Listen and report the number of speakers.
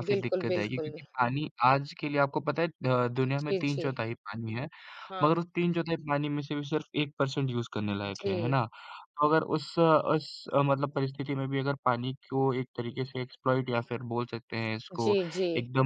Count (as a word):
two